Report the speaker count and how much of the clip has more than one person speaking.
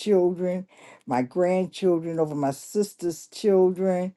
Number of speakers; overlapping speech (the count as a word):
one, no overlap